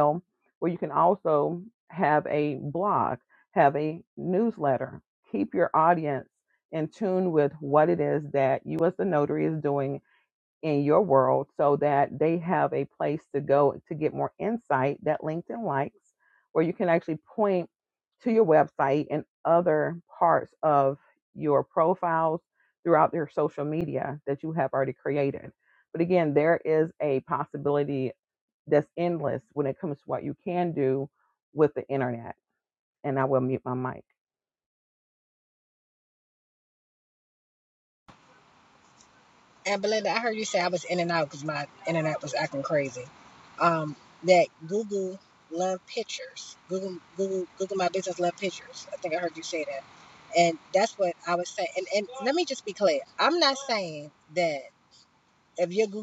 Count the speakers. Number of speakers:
two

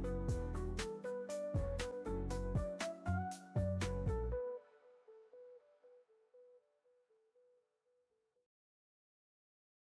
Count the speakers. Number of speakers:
zero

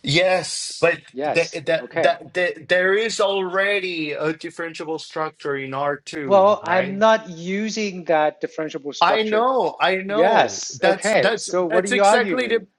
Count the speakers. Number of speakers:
two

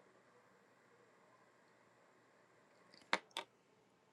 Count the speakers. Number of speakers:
zero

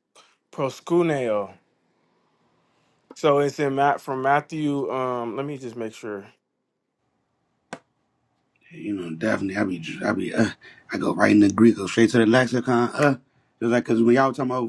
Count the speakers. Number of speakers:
two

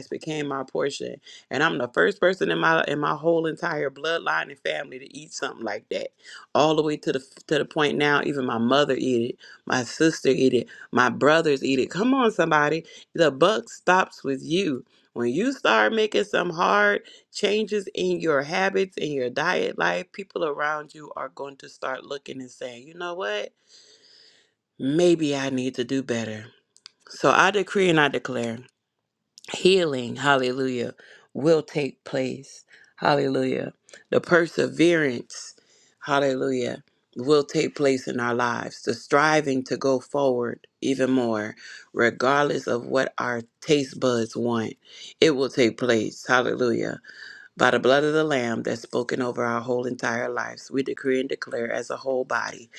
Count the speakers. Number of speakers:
one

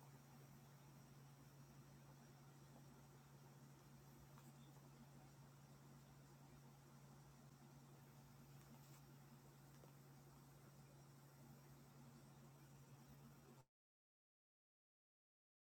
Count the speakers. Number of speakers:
zero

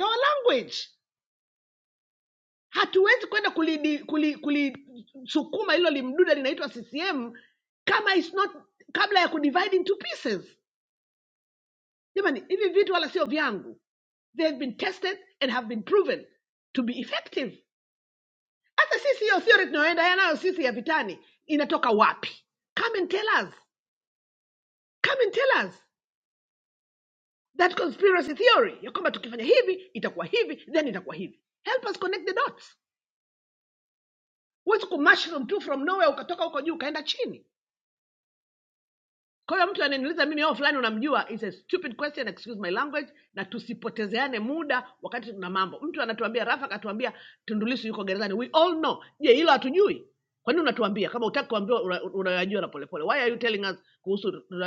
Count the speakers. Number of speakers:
one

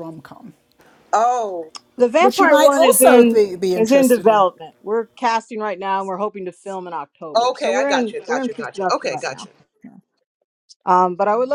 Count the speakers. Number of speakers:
three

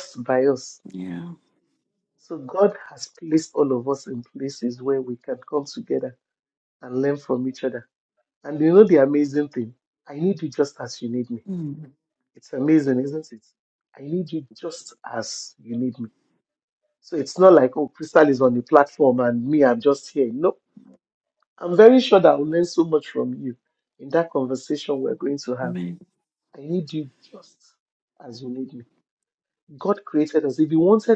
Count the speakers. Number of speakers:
two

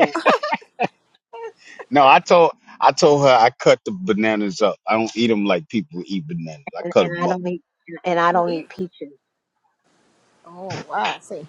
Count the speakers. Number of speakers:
three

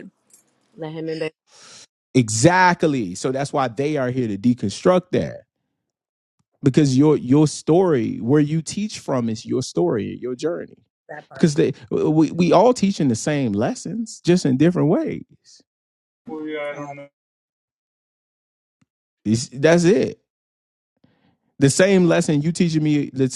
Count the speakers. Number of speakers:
two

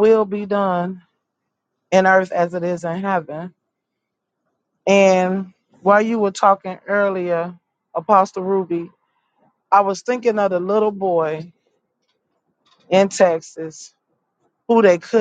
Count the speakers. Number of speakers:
one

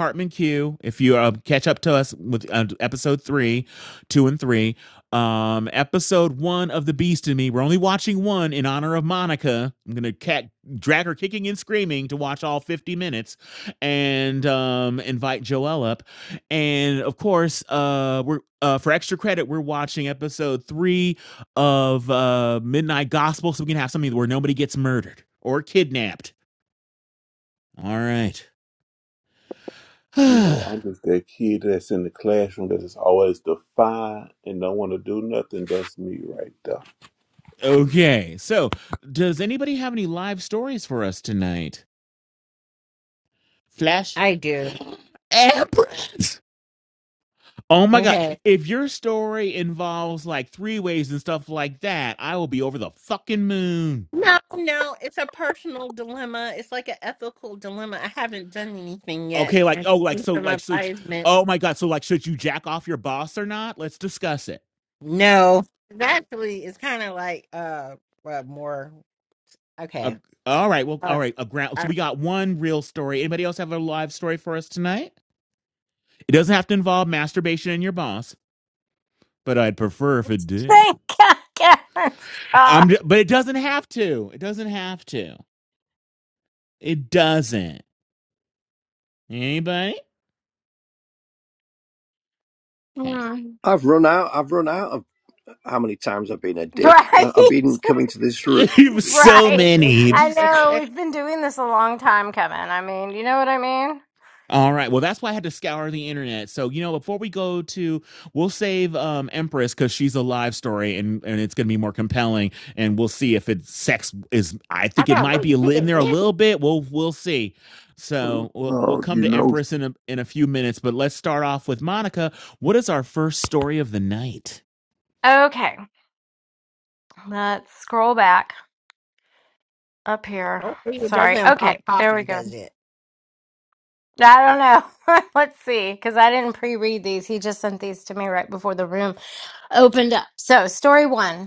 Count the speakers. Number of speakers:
five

